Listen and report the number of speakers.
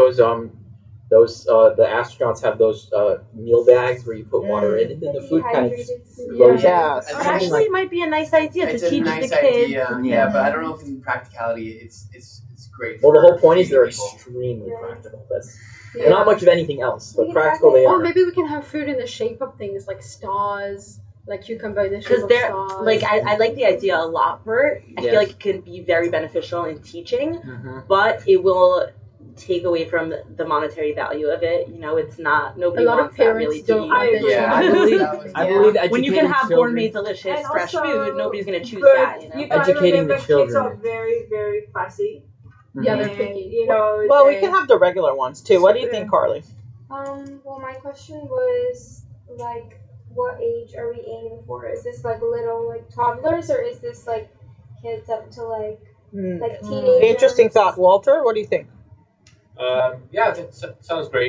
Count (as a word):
eight